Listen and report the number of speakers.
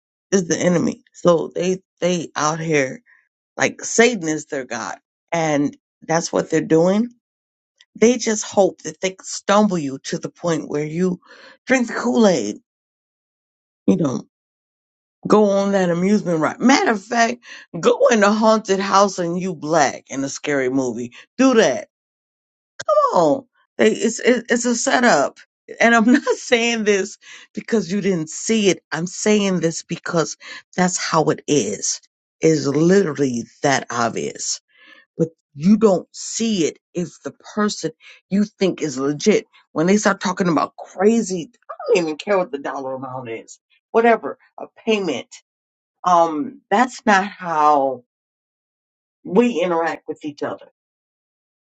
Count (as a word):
one